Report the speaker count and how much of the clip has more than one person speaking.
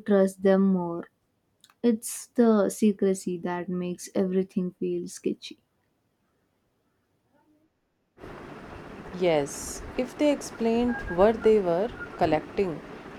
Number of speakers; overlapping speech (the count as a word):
two, no overlap